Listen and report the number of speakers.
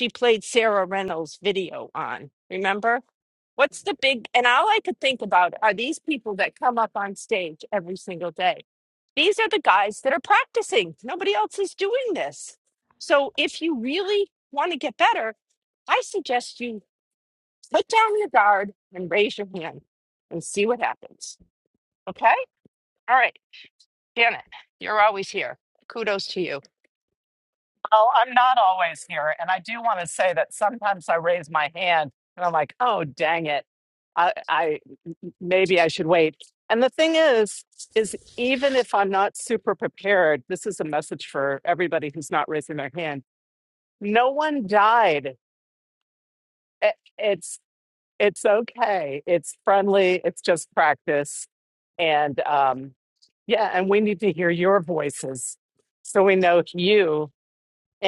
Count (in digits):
2